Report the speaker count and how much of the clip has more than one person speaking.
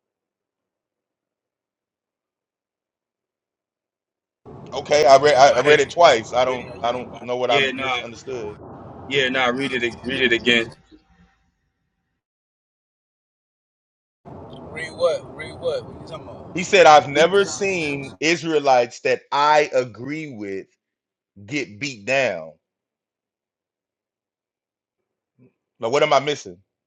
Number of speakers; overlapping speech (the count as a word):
three, about 14%